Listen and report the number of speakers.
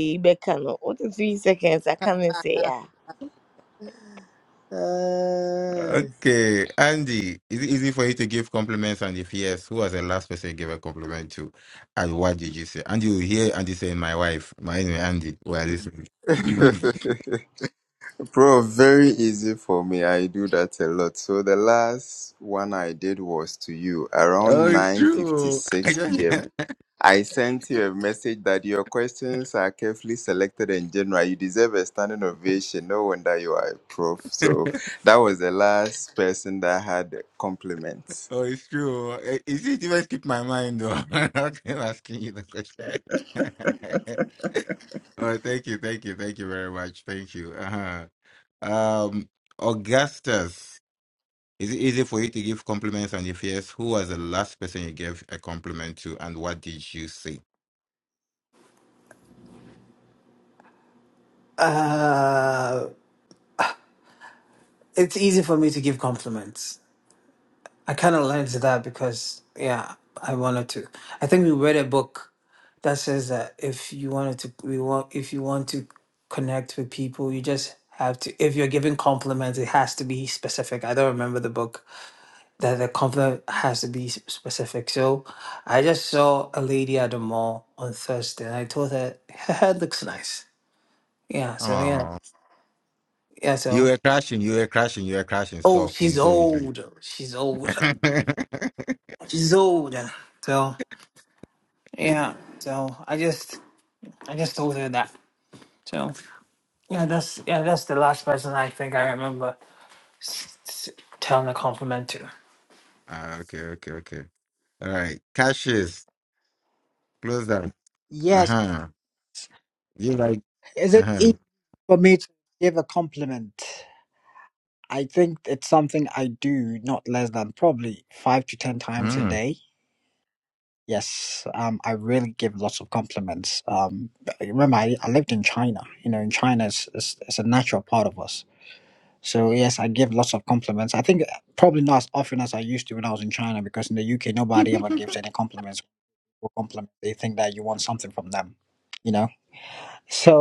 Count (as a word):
five